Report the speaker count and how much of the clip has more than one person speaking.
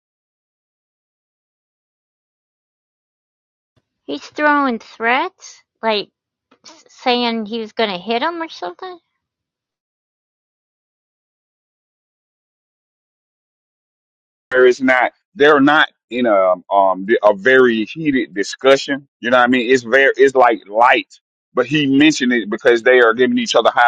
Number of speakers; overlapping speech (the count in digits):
2, no overlap